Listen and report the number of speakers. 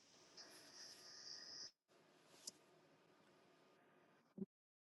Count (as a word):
zero